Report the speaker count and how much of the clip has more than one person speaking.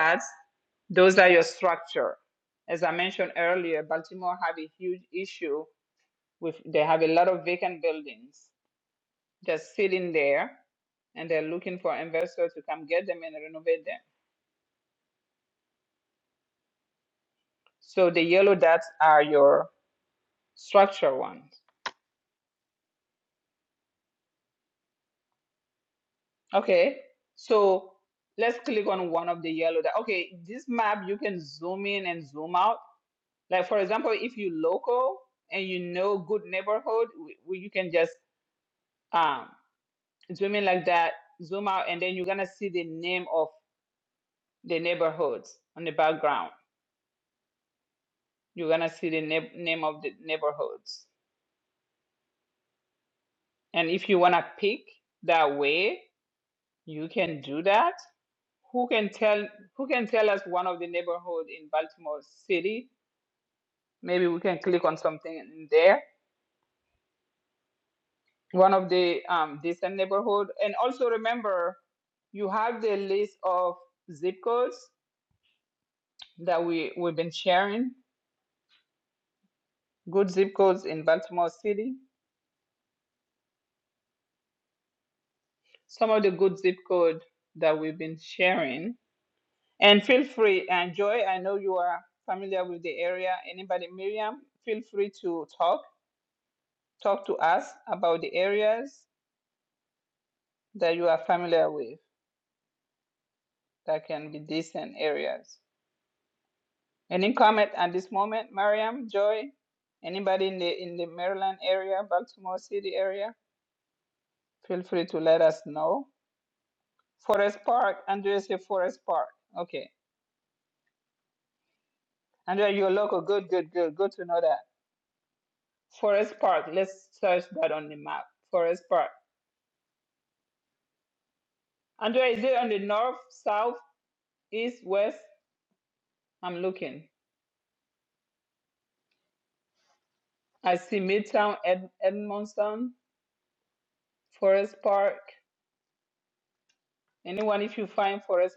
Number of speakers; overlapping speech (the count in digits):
1, no overlap